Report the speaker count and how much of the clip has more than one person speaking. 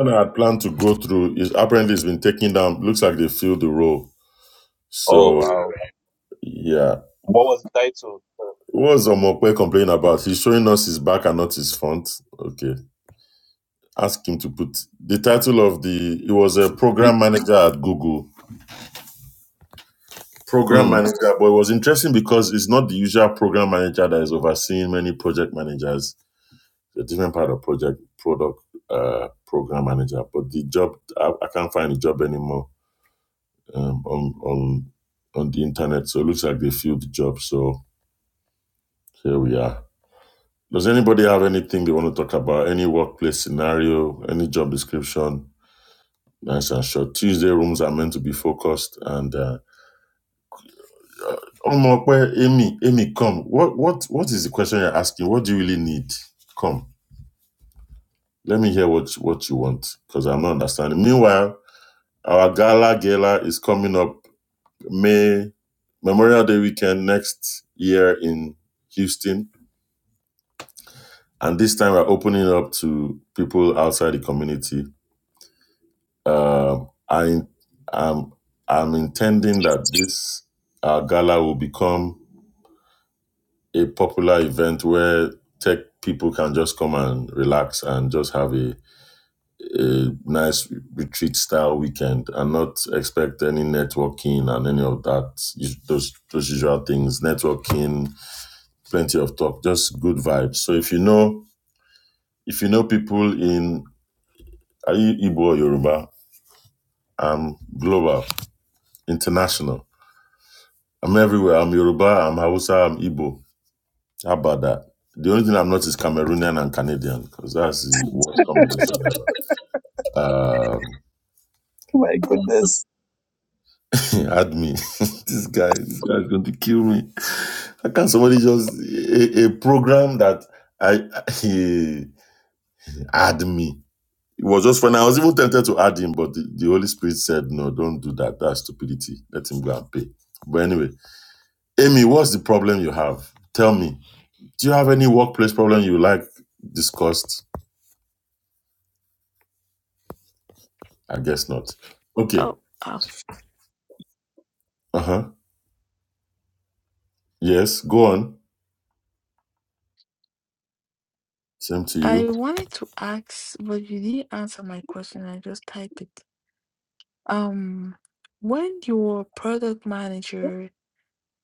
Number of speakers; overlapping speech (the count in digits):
3, about 1%